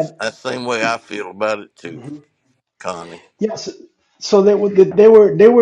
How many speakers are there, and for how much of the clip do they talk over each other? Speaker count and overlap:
2, no overlap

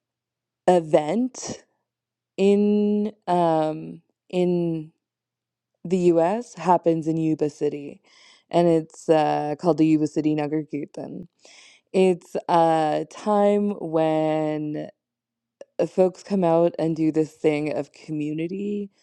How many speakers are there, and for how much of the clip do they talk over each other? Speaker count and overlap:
1, no overlap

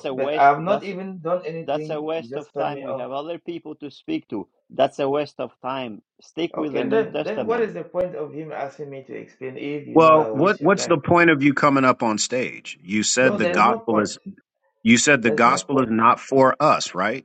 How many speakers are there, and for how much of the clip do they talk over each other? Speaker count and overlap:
3, about 36%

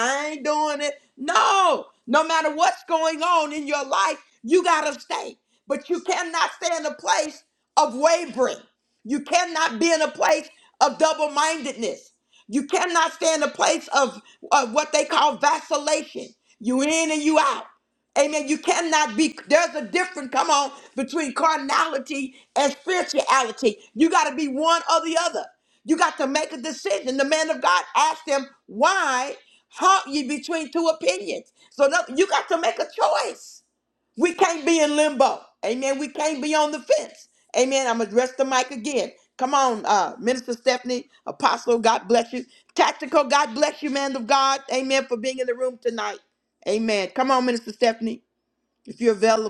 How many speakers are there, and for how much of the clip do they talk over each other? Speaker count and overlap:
1, no overlap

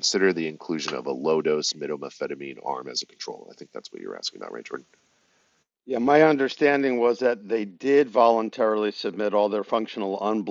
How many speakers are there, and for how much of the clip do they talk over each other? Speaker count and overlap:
2, no overlap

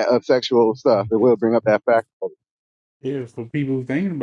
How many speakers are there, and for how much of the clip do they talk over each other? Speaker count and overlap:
2, no overlap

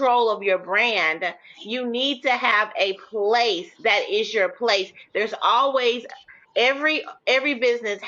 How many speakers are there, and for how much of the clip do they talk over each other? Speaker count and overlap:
1, no overlap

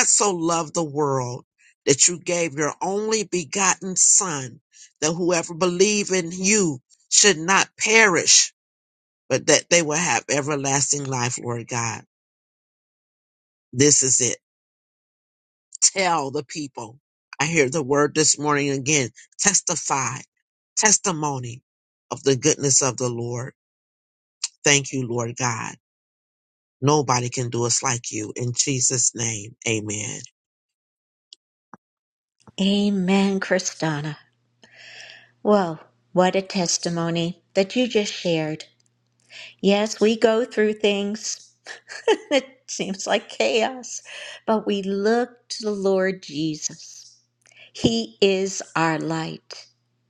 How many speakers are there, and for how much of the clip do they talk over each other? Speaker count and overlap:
2, no overlap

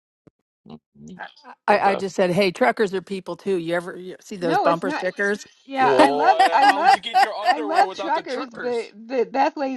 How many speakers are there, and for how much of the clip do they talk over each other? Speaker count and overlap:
3, about 35%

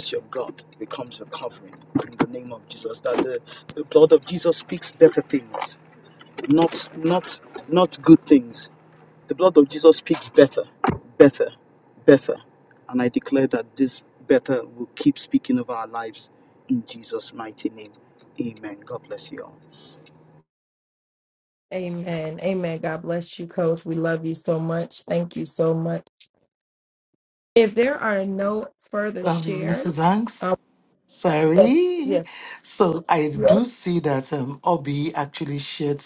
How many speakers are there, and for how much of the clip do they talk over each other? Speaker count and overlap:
3, about 3%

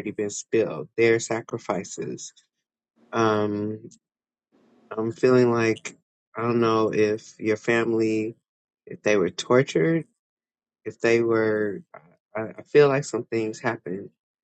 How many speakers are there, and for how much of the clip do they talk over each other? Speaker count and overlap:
1, no overlap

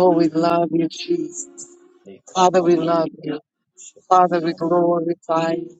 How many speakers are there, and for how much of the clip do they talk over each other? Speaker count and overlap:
1, no overlap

